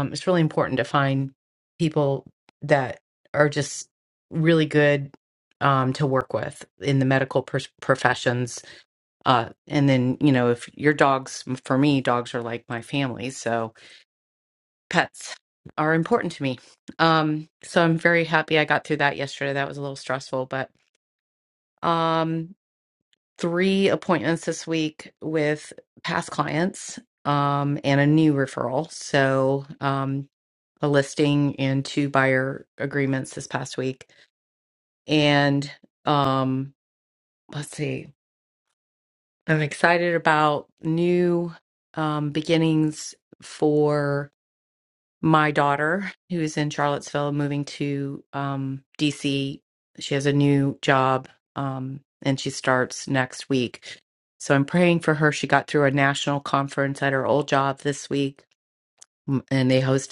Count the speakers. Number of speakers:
one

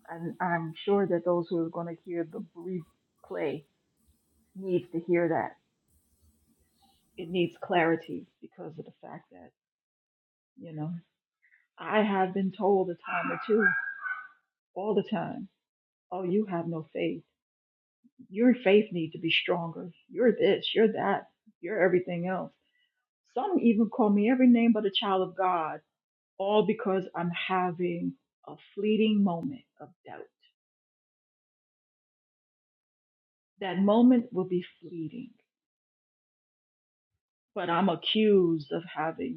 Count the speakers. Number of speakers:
one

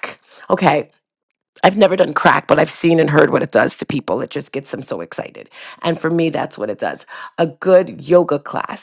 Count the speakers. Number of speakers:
one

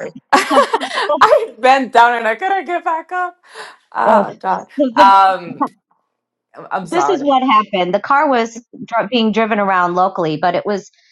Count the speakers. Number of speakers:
two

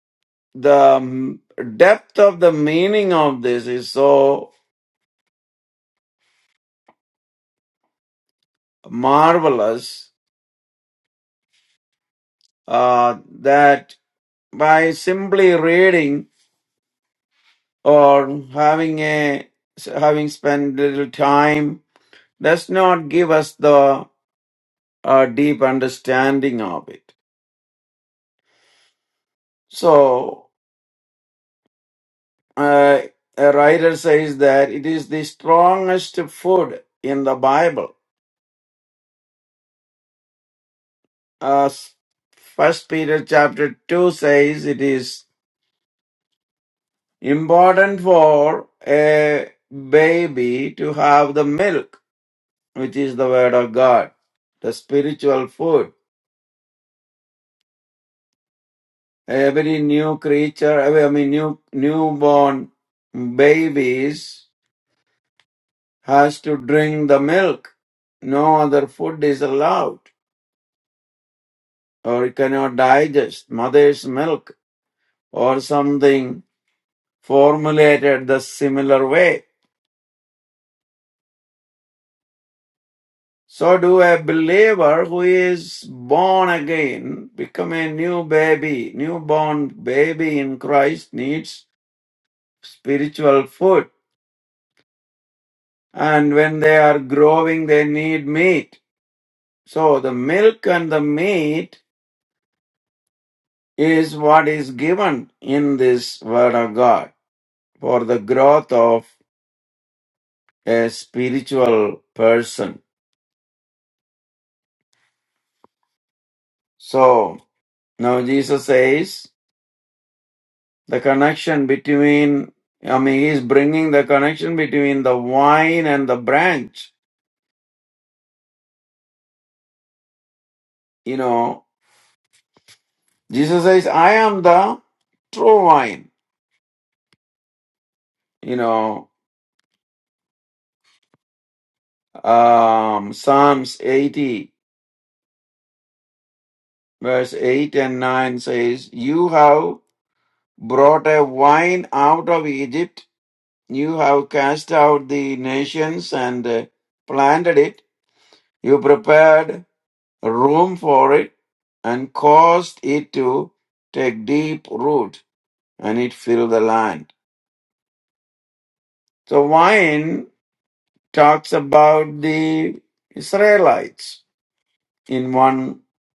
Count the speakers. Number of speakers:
one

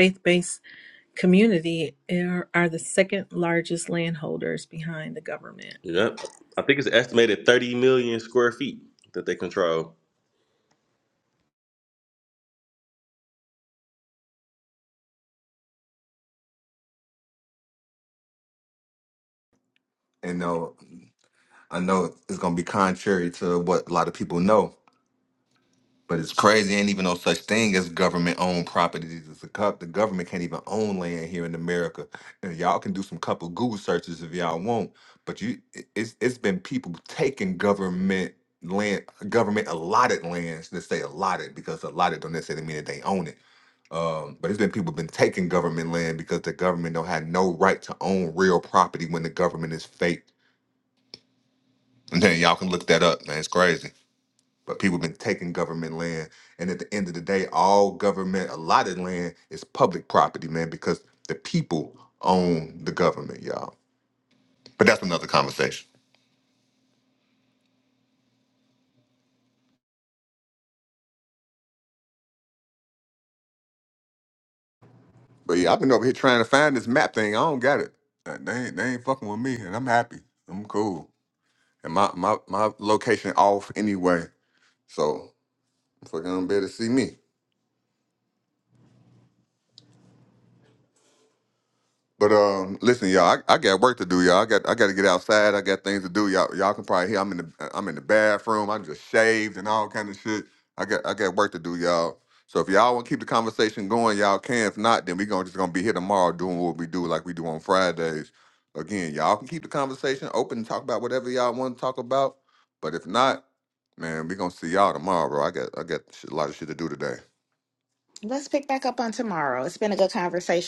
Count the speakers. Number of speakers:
four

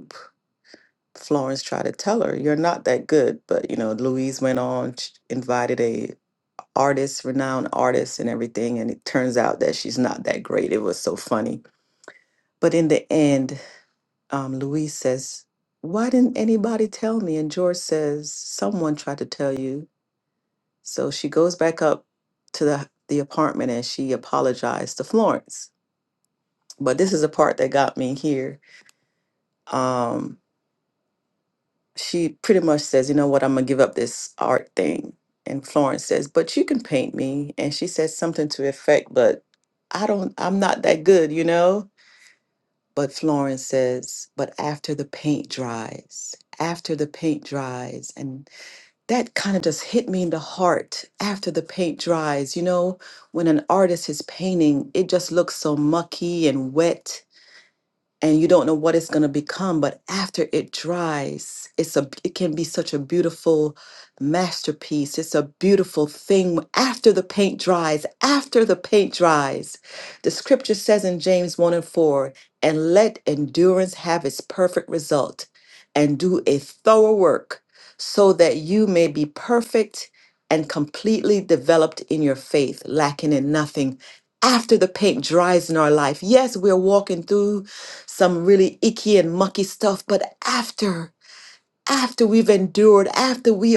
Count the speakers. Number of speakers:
one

